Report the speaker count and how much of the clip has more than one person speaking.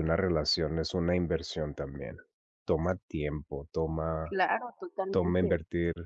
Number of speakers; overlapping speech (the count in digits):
2, about 8%